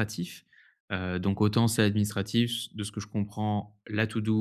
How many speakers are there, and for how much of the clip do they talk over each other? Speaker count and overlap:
one, no overlap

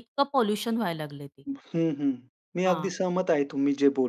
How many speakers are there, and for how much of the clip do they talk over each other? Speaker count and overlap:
two, about 6%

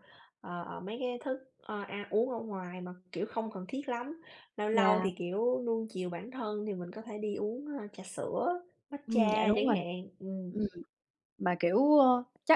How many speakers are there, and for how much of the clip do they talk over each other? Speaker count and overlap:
two, about 9%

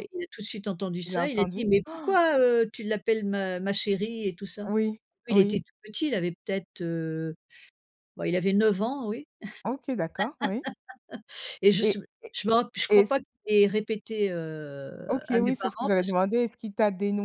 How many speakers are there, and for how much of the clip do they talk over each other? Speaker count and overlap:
two, about 19%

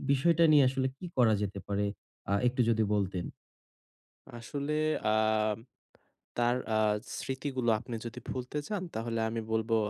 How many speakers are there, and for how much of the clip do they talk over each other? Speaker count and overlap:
two, no overlap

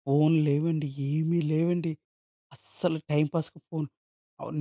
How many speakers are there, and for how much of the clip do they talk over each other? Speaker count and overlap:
one, no overlap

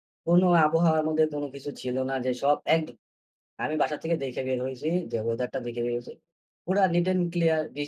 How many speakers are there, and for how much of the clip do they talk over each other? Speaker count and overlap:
one, no overlap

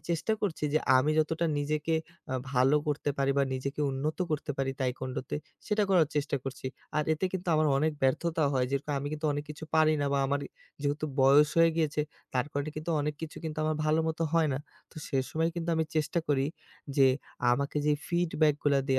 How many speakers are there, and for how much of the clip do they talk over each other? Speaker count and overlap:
one, no overlap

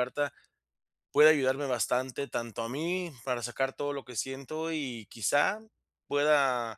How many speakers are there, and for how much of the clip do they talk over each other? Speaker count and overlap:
one, no overlap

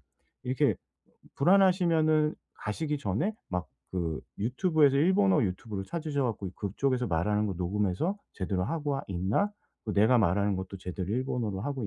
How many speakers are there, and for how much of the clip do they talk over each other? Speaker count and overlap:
one, no overlap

